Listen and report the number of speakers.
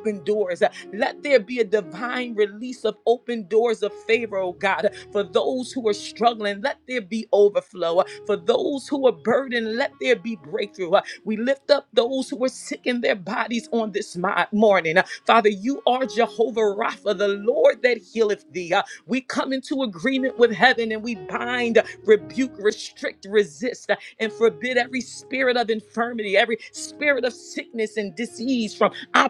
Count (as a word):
one